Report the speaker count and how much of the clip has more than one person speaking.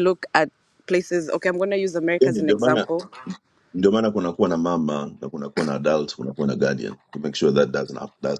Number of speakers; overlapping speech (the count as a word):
two, about 8%